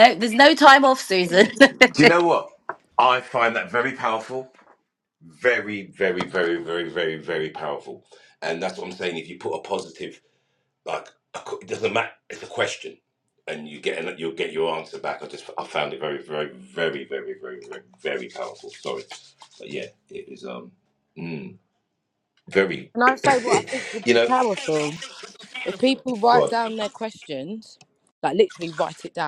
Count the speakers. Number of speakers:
3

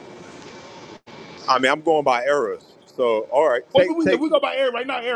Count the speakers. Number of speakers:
2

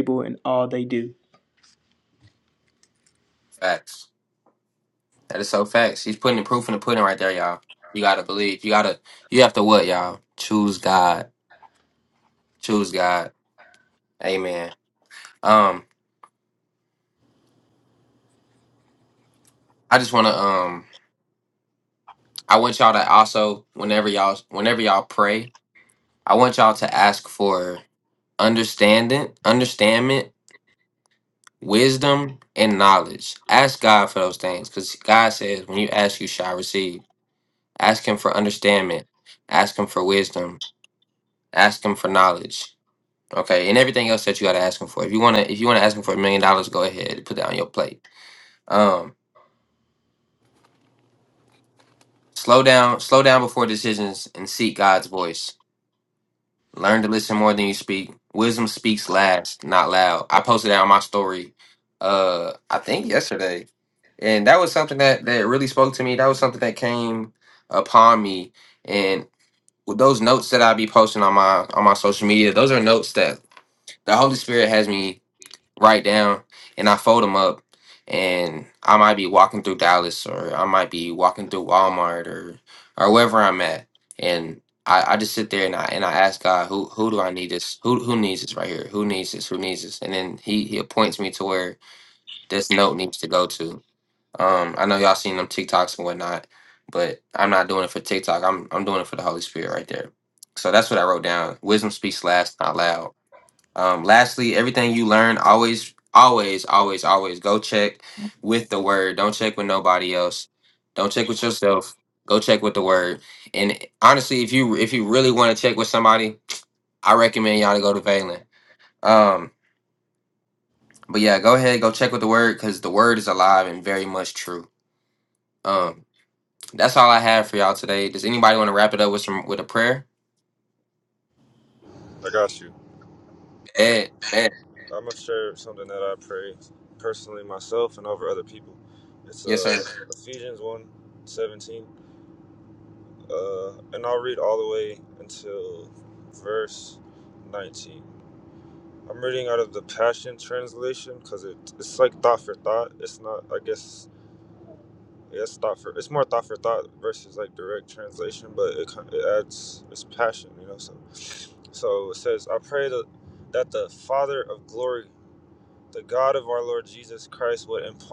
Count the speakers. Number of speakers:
3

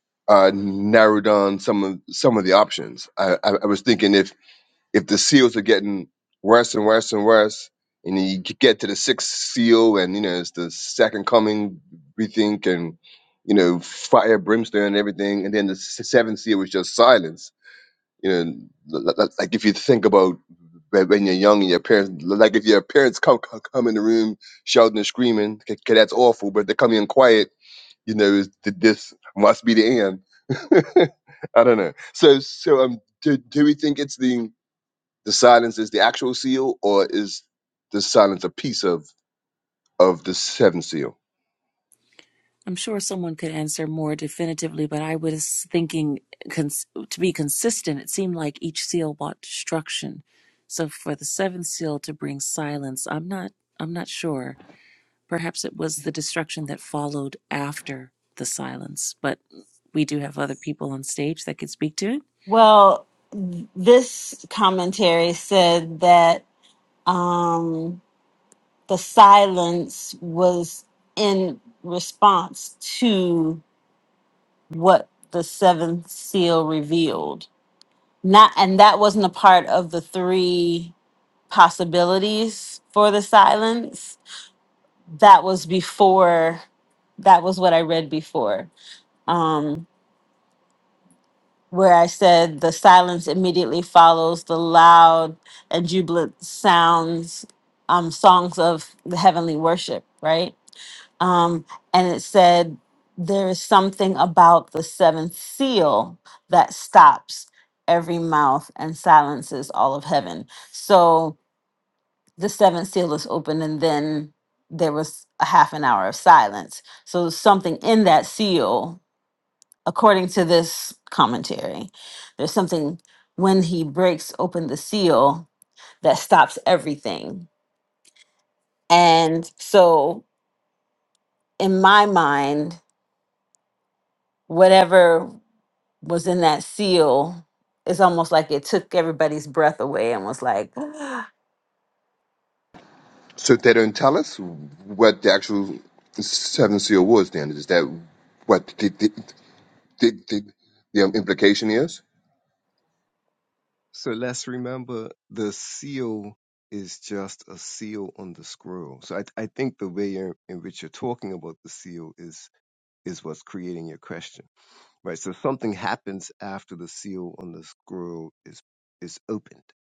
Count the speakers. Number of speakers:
4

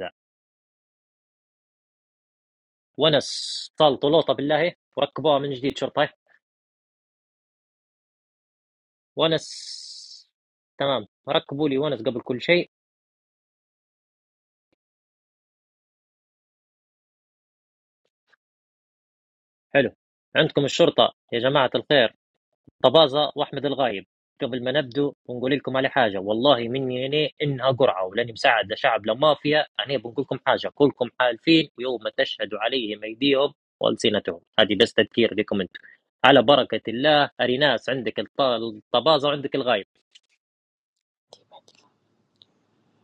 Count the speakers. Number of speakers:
1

